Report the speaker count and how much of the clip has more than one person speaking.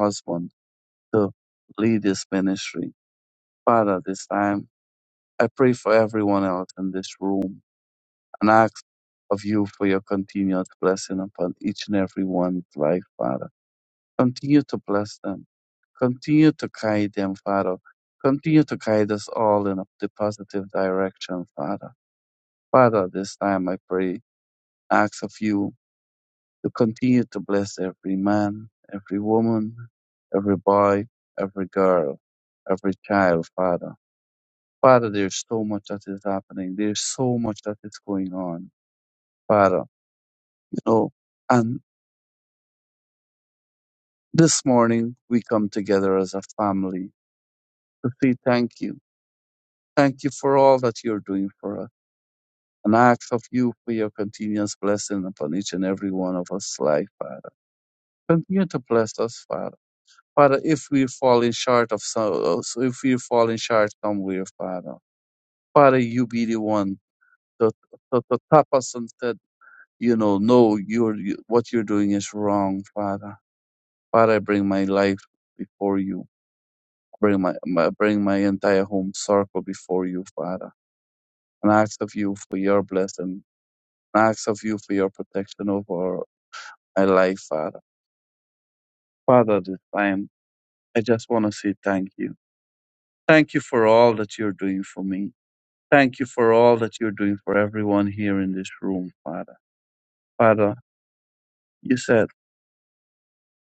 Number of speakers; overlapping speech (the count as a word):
one, no overlap